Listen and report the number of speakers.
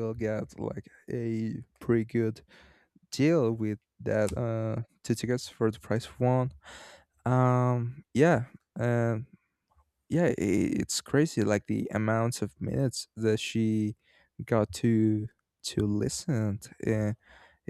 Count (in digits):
1